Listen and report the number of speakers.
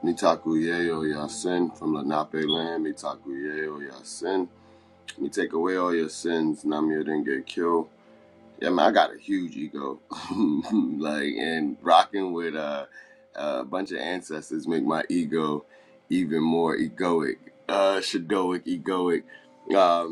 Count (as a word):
one